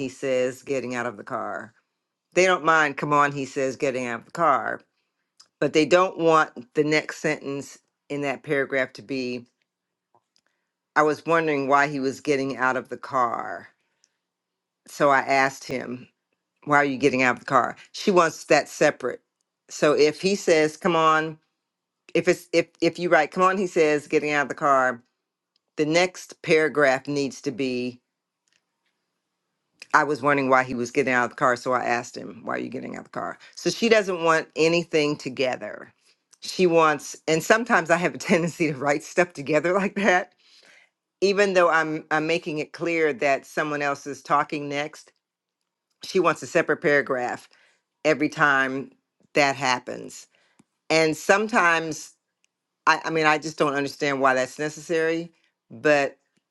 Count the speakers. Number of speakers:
1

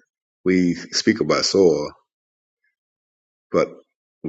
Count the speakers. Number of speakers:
1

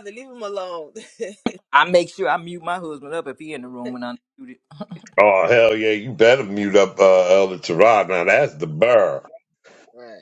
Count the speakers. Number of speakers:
3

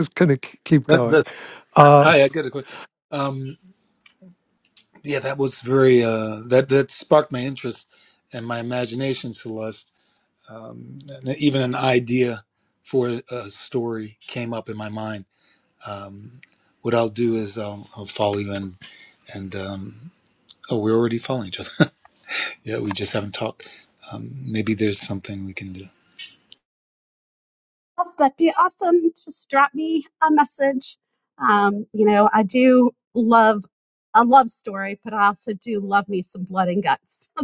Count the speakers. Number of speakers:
3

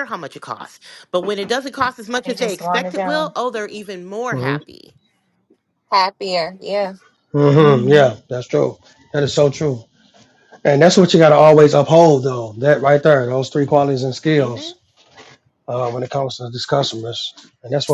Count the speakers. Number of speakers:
3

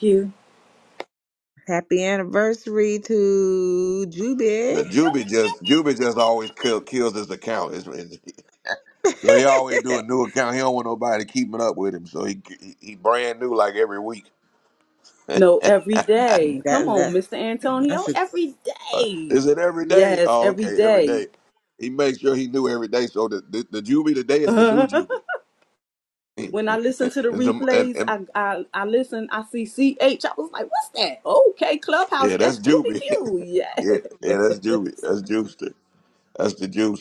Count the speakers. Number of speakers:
3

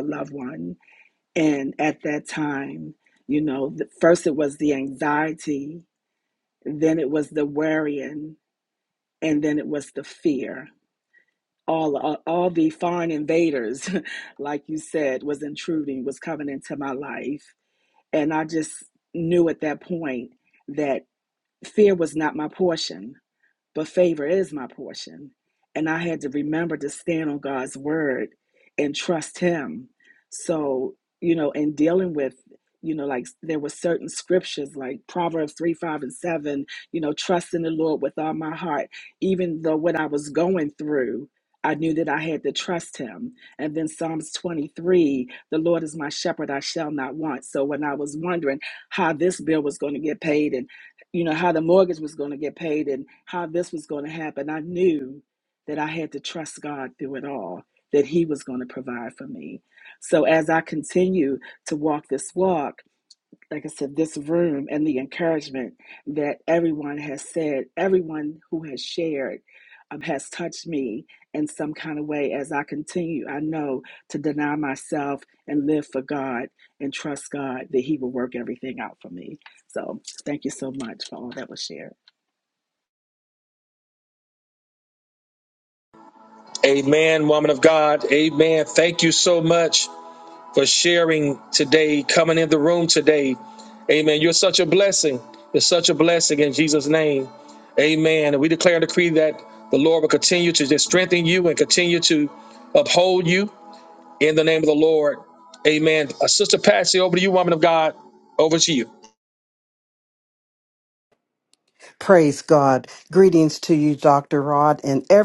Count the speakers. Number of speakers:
3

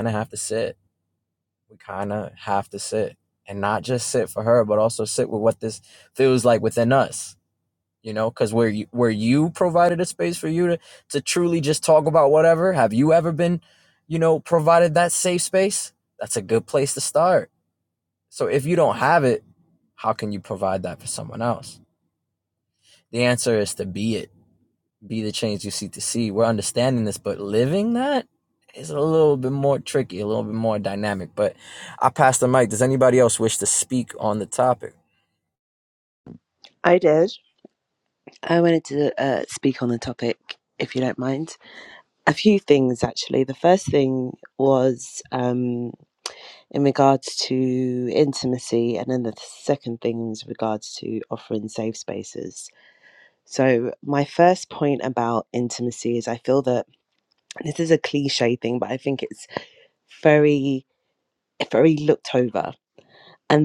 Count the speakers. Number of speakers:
2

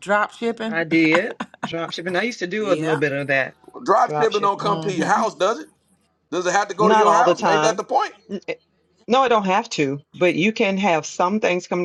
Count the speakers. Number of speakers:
3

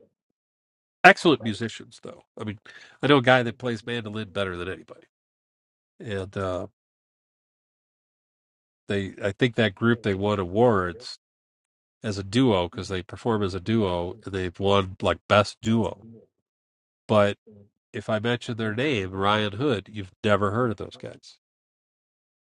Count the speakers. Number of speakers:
1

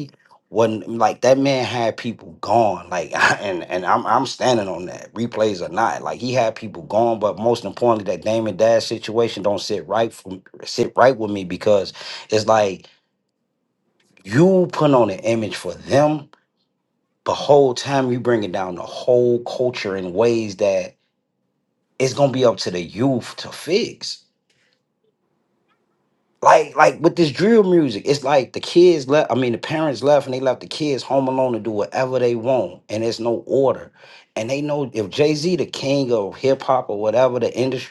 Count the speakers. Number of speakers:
1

